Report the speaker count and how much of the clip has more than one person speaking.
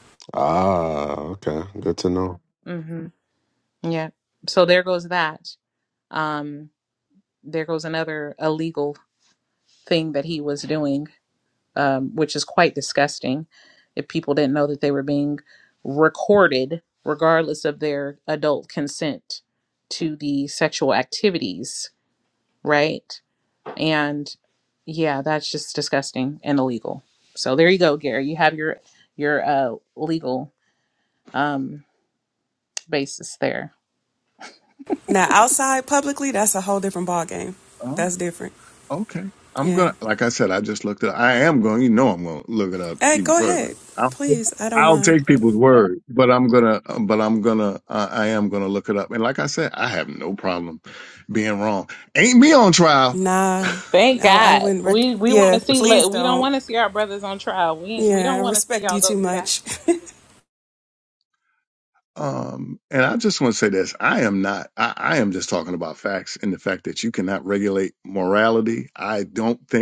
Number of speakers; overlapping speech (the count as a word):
four, about 8%